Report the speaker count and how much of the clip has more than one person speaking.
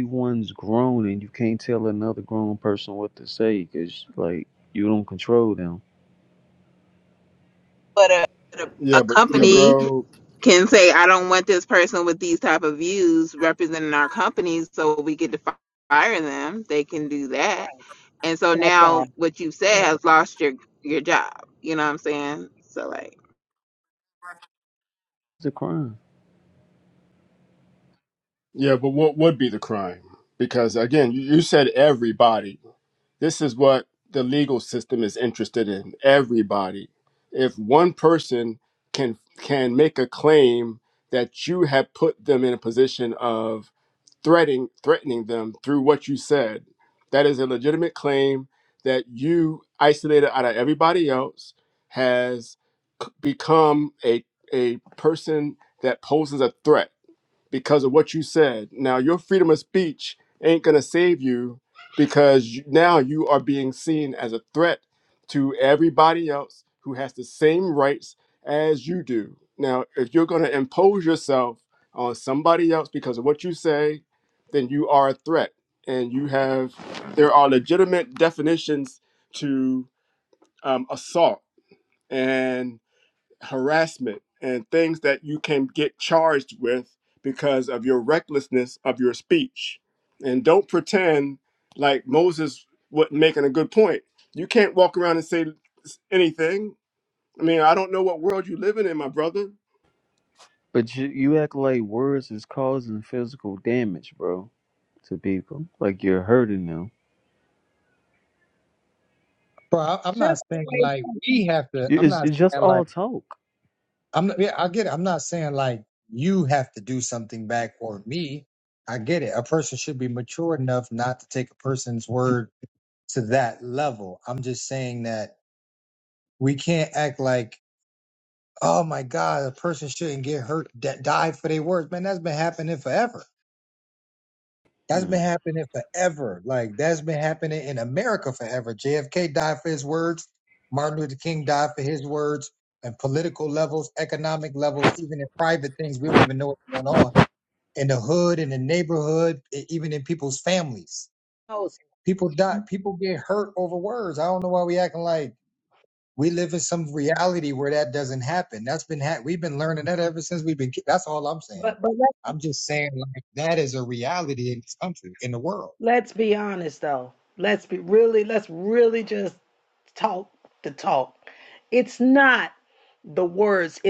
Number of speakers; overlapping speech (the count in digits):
5, about 2%